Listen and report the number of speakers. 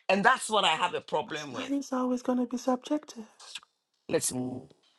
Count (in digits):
2